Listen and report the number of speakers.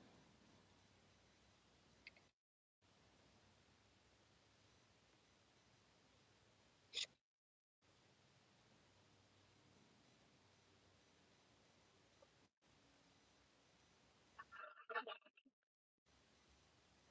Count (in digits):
0